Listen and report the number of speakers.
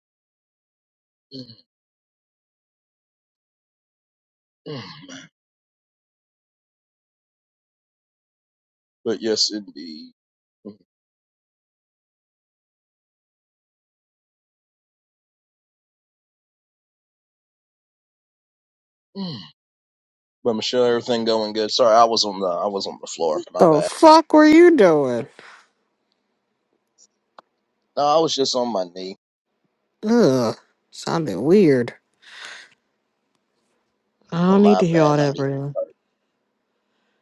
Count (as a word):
two